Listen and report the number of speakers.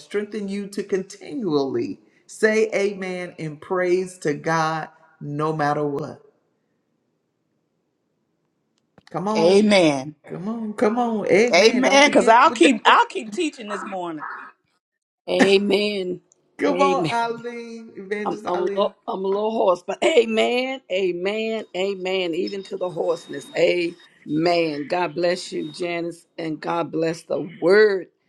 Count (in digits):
3